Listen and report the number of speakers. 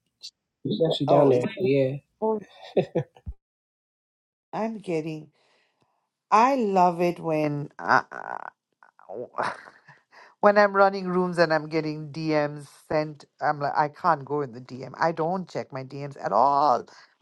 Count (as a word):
two